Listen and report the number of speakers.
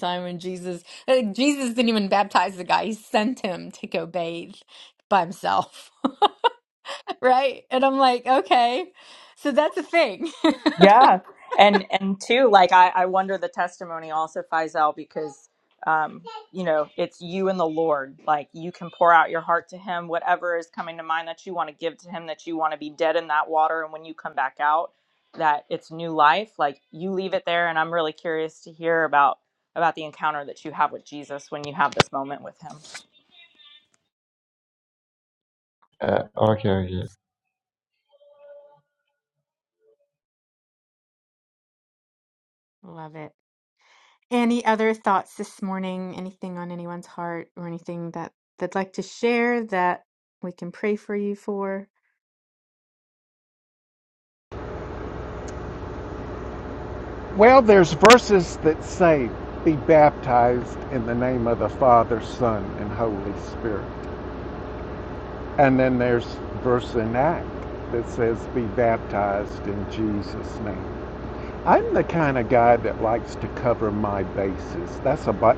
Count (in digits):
4